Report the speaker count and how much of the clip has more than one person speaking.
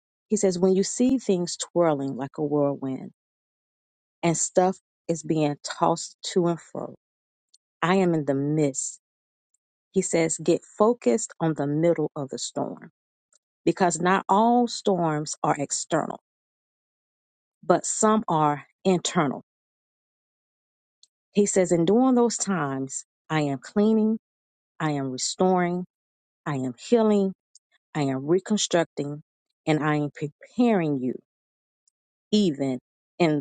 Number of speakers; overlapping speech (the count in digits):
1, no overlap